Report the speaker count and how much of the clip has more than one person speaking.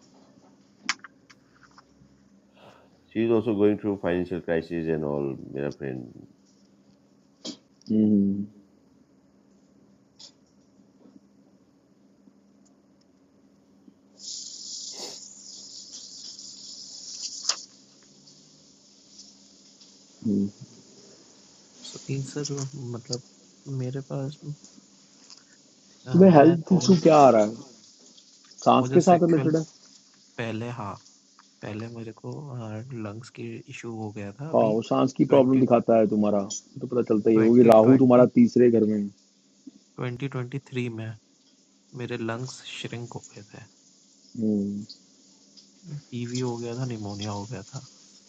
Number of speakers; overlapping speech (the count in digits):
3, about 7%